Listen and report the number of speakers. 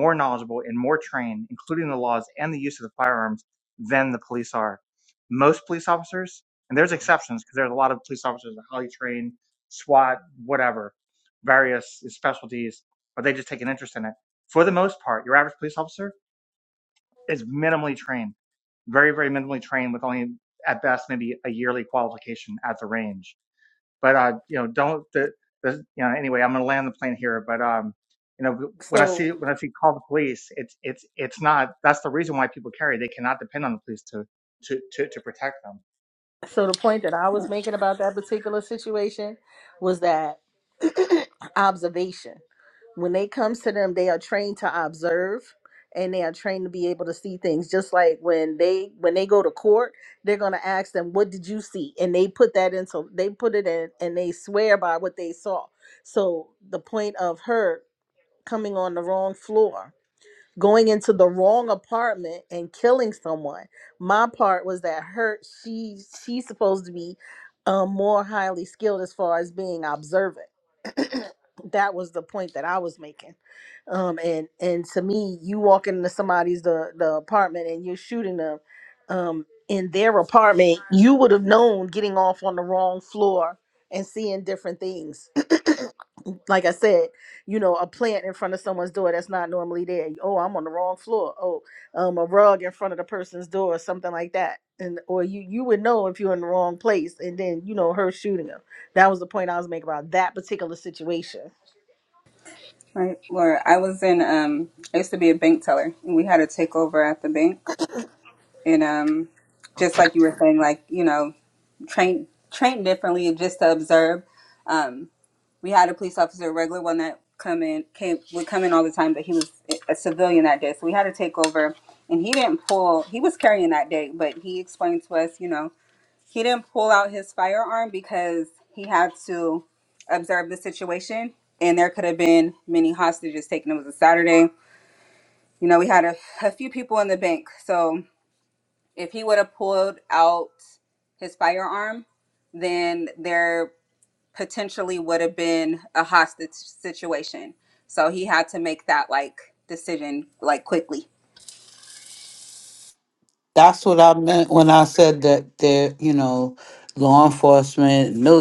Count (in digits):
4